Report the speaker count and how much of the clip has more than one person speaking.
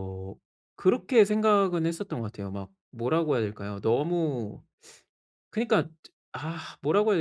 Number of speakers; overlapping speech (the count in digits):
1, no overlap